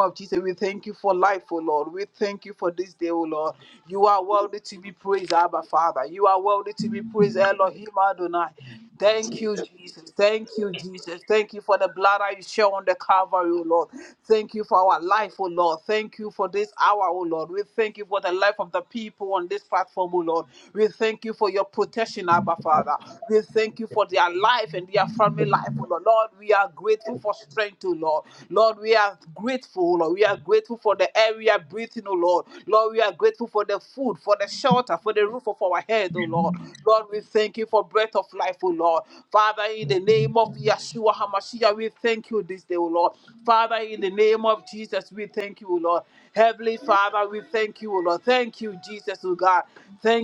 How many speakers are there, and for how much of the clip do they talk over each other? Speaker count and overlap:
1, no overlap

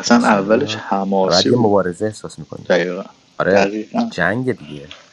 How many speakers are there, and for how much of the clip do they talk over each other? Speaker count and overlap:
2, about 30%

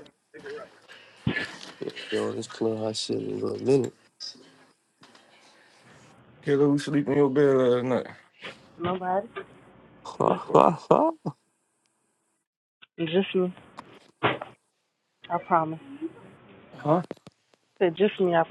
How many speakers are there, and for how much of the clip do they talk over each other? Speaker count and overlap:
3, no overlap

